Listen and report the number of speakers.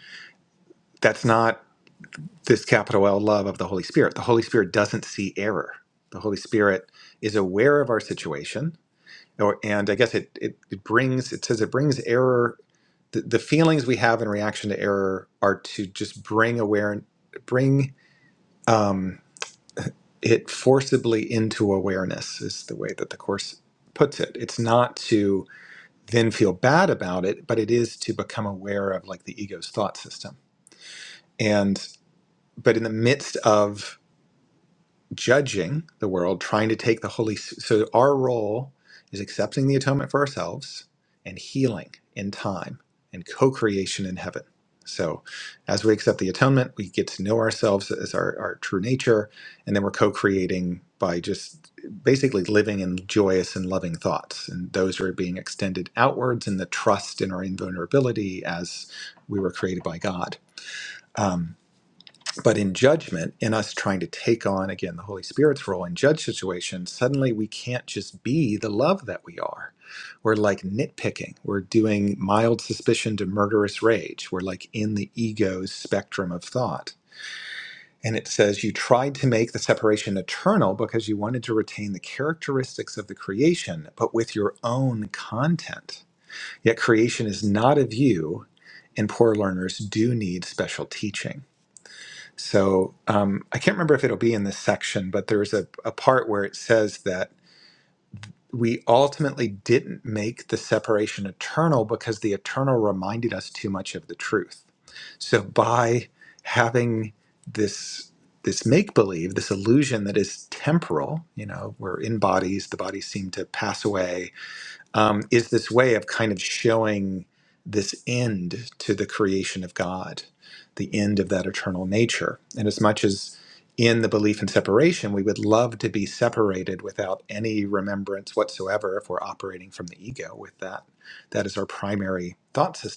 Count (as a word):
one